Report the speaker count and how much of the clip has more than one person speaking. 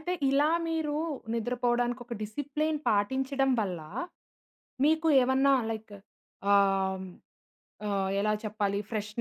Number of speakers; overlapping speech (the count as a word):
one, no overlap